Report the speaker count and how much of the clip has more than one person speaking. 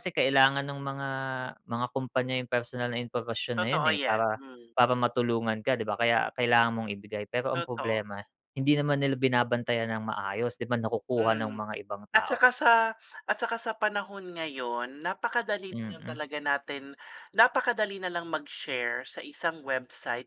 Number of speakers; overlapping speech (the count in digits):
2, about 12%